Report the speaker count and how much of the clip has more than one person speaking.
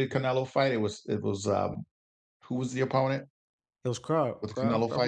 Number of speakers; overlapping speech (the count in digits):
2, about 13%